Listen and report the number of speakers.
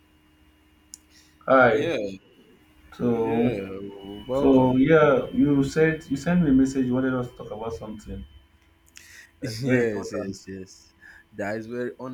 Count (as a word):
two